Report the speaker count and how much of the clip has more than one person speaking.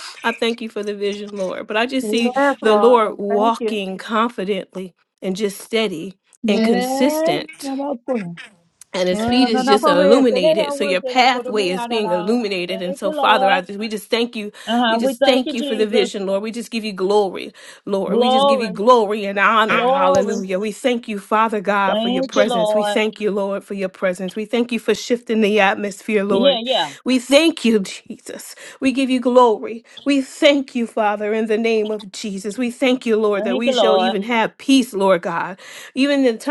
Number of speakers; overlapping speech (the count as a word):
two, about 30%